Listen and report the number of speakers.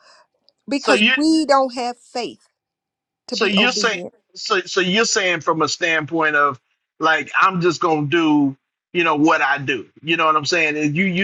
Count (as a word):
two